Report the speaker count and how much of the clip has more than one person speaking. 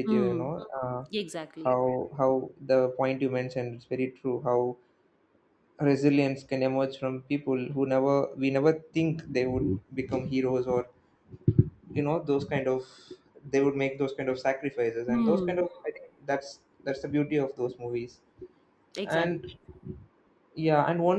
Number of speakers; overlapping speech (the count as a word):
two, about 6%